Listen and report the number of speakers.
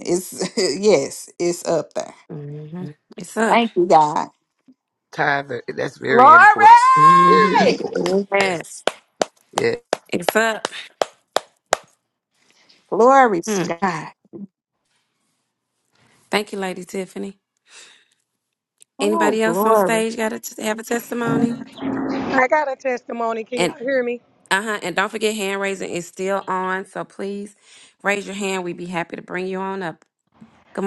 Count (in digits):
4